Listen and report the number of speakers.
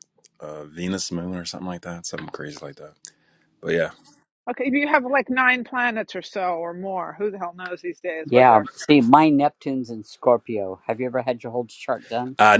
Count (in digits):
3